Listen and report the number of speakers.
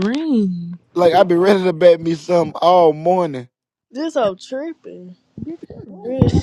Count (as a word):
three